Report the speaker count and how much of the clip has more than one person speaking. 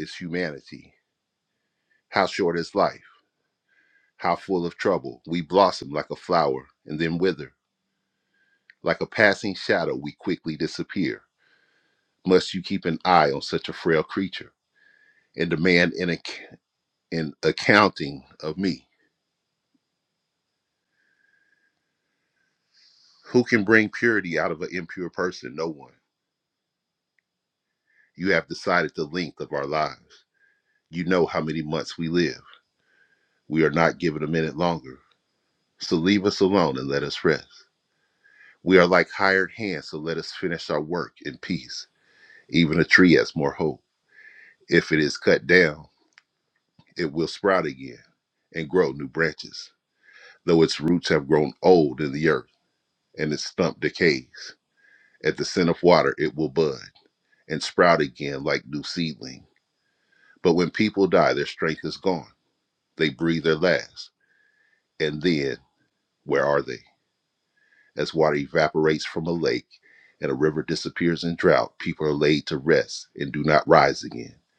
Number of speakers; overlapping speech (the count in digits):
1, no overlap